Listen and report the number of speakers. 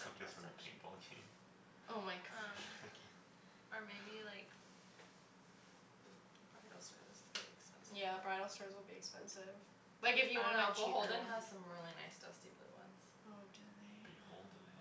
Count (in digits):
3